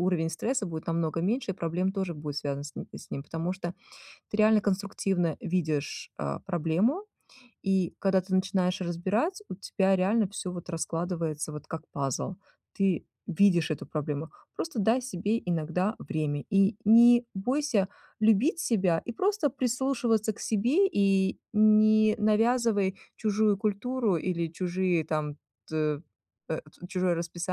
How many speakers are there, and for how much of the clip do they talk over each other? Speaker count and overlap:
1, no overlap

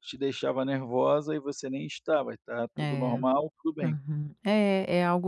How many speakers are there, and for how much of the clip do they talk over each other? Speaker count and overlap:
2, about 11%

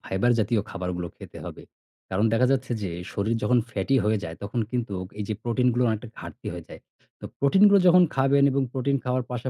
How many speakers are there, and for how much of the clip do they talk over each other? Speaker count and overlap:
1, no overlap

